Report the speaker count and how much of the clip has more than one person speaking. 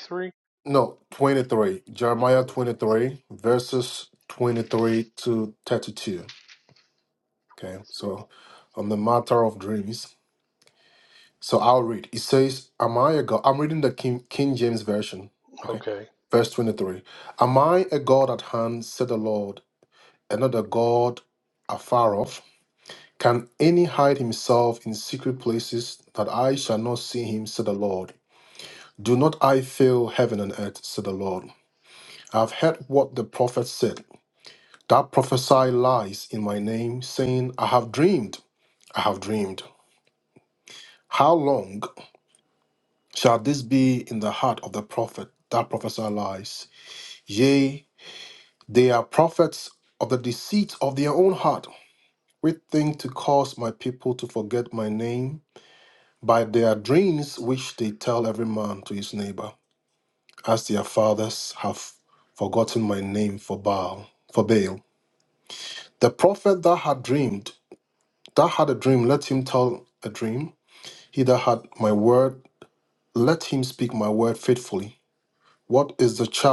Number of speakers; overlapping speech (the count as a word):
two, about 2%